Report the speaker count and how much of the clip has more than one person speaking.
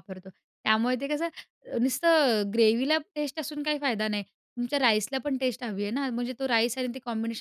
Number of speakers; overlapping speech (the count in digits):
1, no overlap